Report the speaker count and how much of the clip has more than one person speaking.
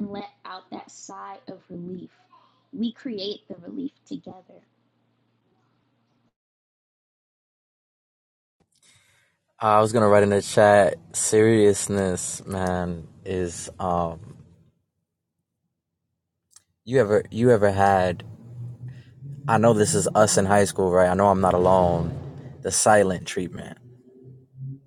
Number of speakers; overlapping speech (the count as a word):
two, no overlap